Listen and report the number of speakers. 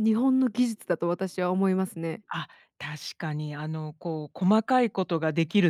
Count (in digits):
2